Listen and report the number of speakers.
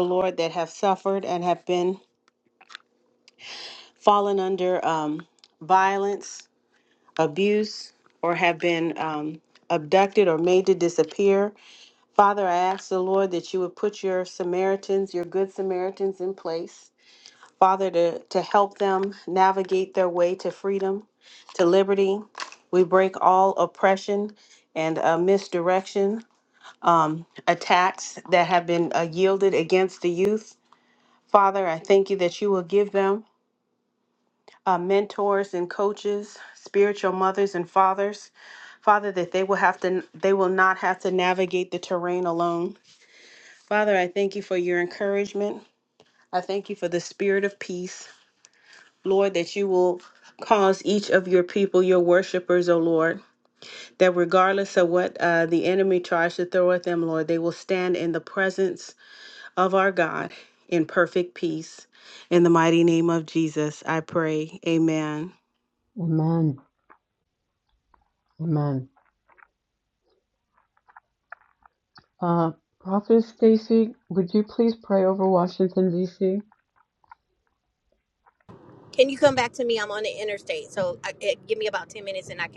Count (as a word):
three